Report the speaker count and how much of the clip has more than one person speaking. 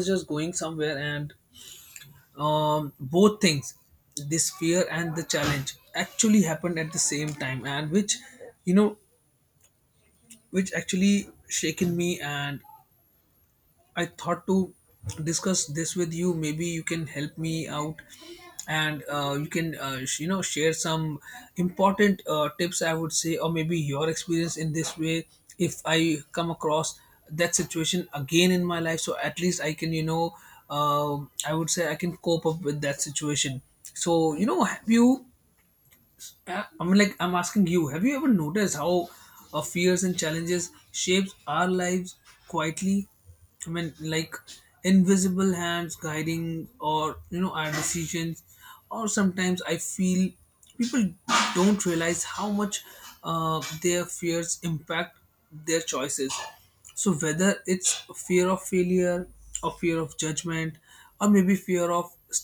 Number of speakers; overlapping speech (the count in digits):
1, no overlap